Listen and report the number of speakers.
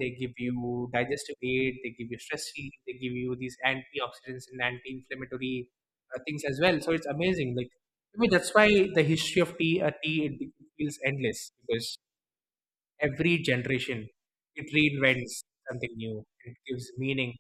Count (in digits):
1